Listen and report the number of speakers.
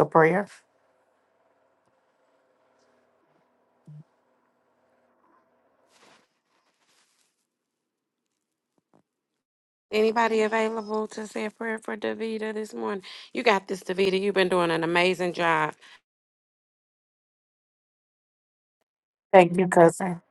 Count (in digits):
2